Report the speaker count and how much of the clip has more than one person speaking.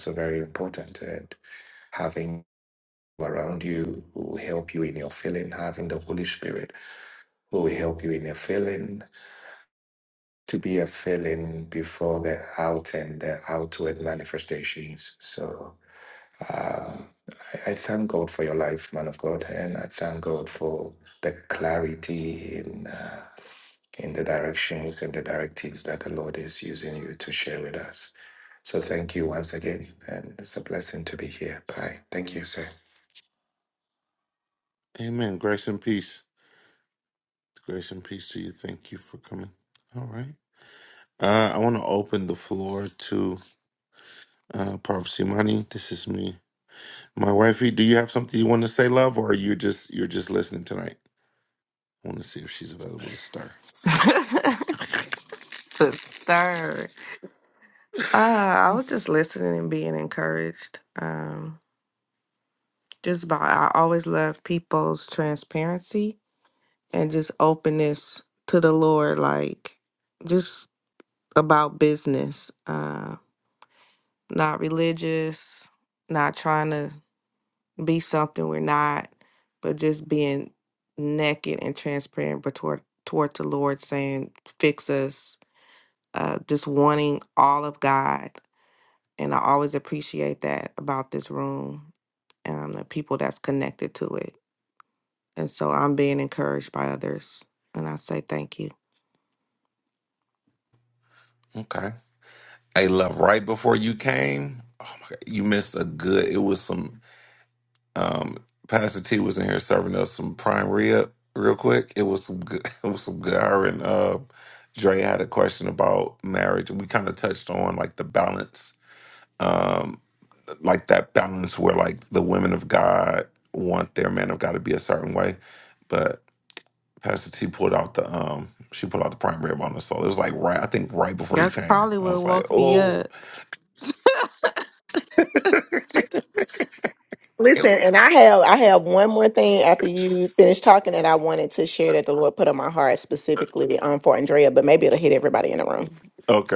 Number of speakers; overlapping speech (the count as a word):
four, about 1%